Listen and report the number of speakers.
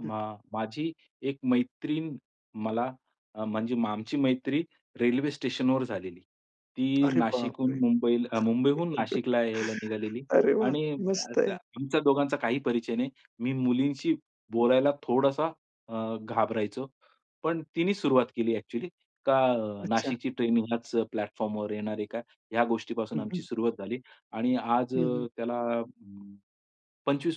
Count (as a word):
two